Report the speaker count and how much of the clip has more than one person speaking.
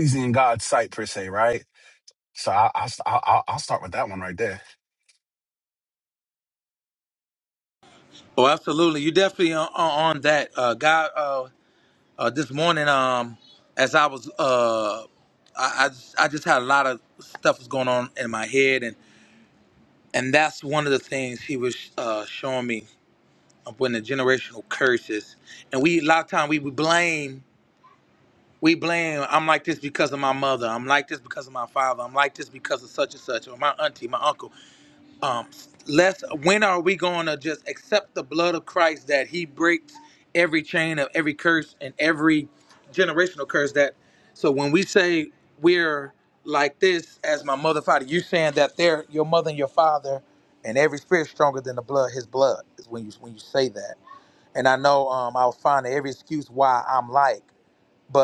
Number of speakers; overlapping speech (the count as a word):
two, no overlap